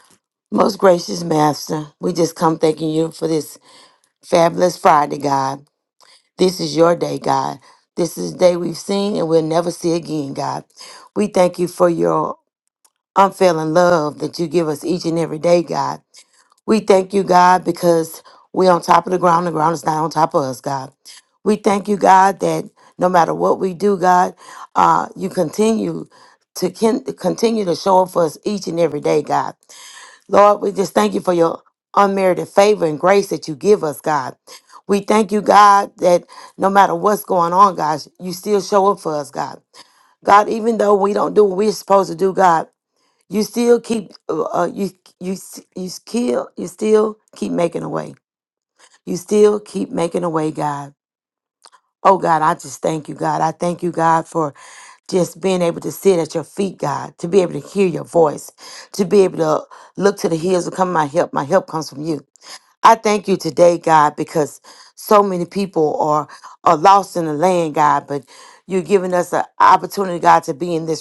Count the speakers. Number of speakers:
one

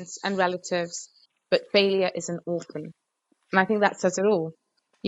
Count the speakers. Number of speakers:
one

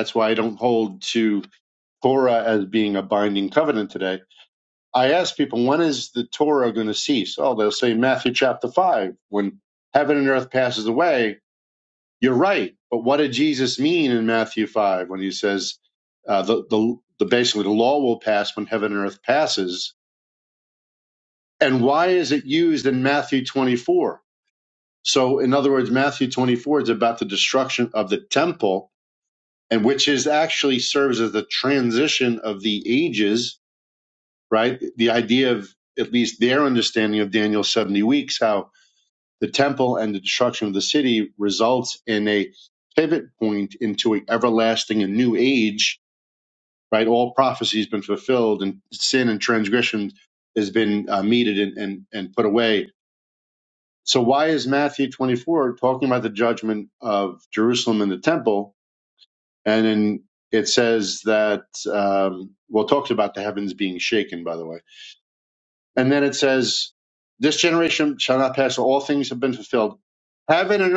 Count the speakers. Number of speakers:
one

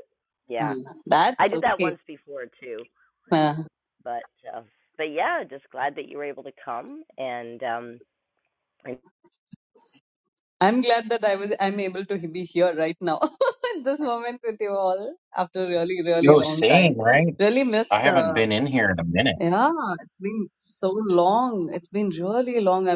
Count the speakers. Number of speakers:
three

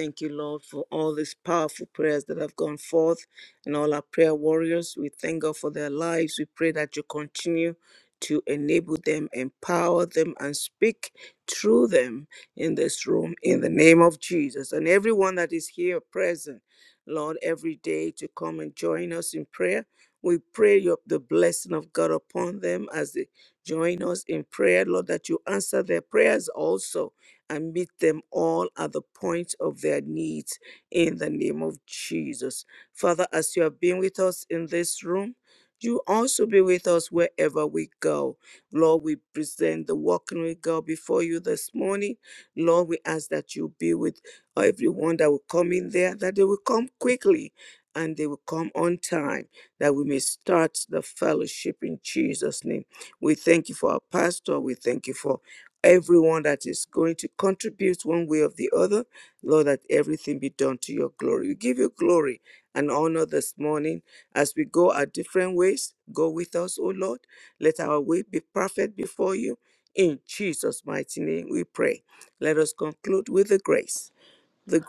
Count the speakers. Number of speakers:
one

